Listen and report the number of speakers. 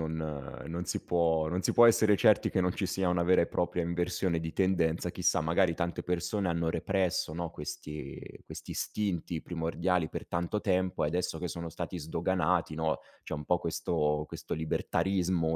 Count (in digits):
1